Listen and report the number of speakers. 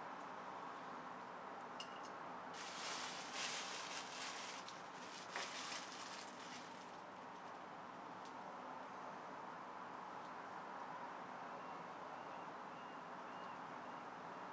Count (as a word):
zero